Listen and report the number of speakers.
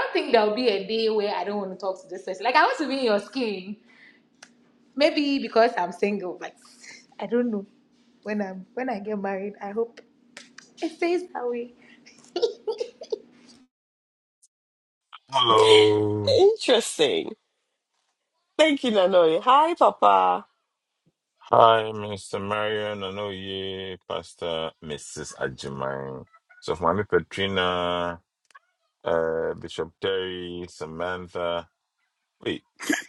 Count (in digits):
3